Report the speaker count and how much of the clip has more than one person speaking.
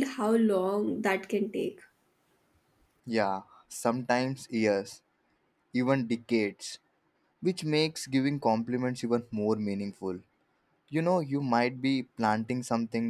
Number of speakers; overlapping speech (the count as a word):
two, no overlap